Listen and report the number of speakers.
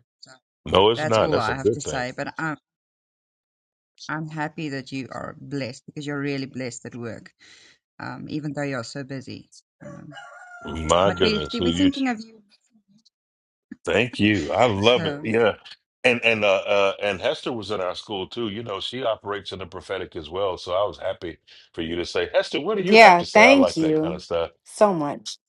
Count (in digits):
3